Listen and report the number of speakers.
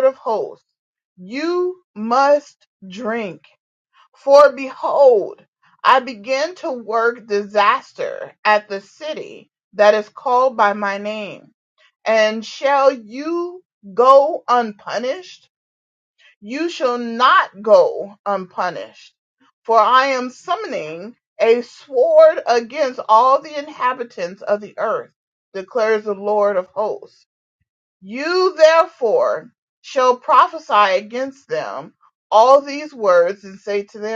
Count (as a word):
one